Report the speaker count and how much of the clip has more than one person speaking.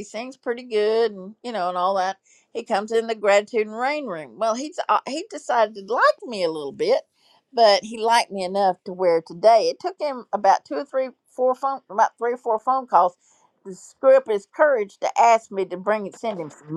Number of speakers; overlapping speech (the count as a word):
one, no overlap